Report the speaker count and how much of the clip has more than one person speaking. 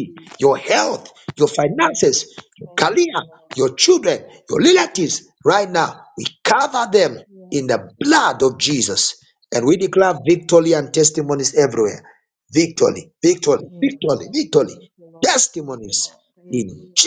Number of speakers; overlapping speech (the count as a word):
two, about 28%